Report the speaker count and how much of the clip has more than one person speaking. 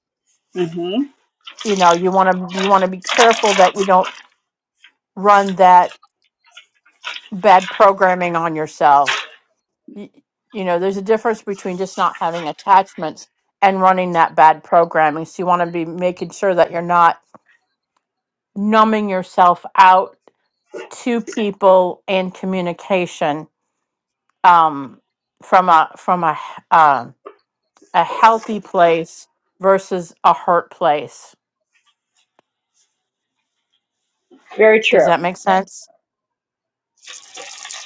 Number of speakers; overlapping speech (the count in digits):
2, about 1%